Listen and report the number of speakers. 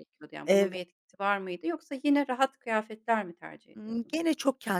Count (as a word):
two